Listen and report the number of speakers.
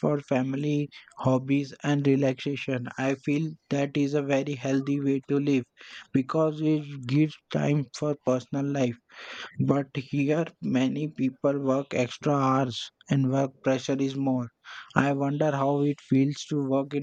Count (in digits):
1